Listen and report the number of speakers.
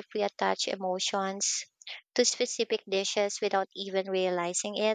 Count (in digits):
1